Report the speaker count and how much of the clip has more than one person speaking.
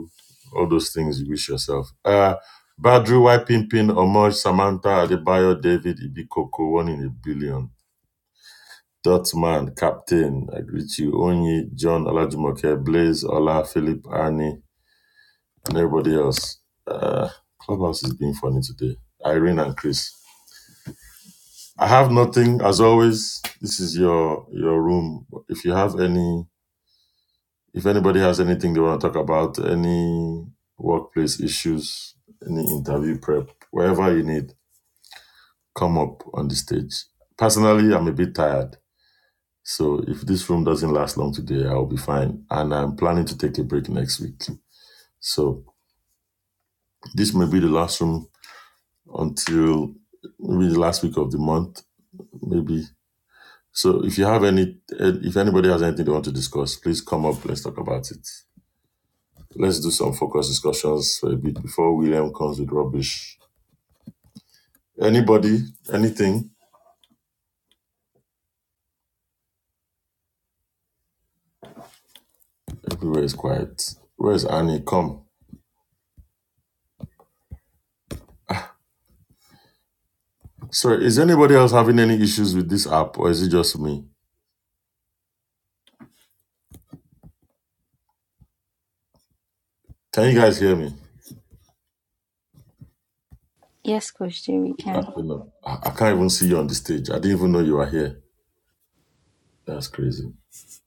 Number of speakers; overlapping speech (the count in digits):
2, under 1%